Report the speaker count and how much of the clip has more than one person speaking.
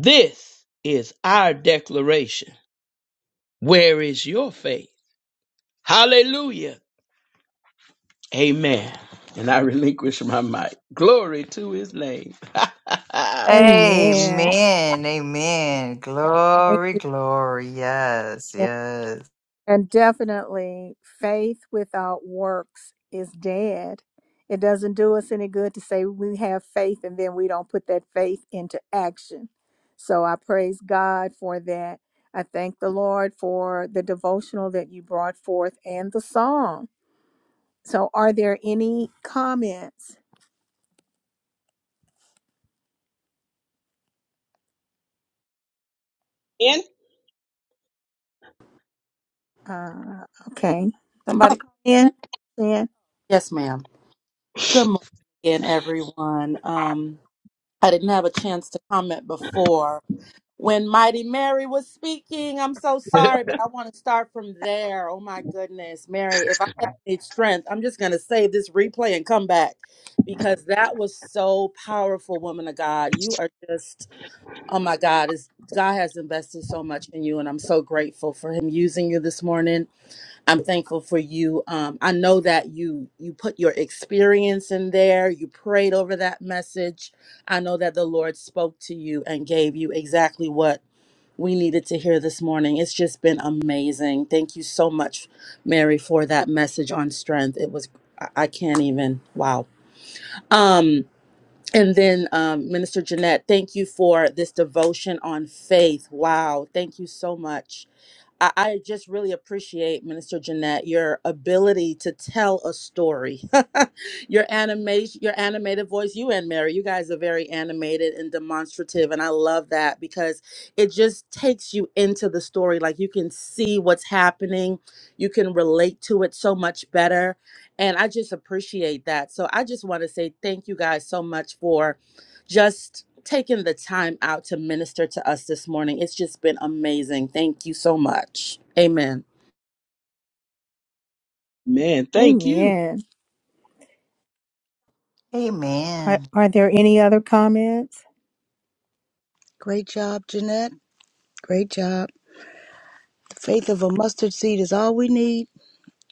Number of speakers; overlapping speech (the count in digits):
5, about 2%